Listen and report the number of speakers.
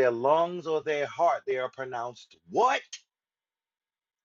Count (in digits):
1